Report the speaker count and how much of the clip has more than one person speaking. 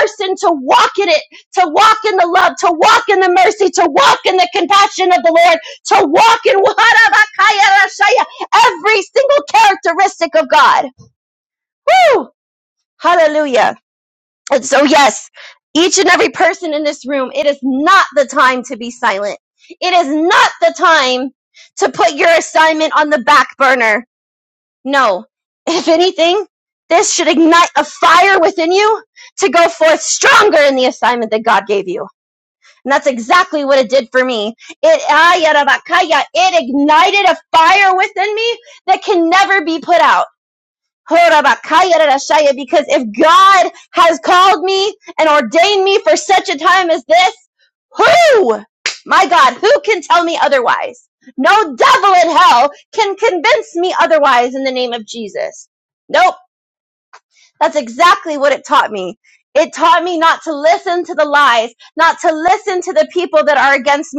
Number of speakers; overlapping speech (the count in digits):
1, no overlap